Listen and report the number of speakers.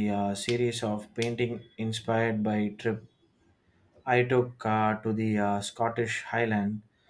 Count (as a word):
one